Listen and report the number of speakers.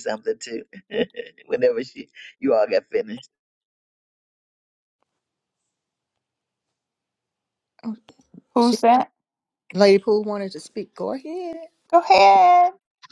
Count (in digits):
3